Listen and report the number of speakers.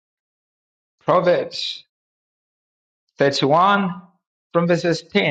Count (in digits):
1